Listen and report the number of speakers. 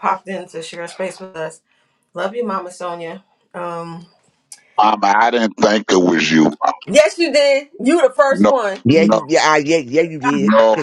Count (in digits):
3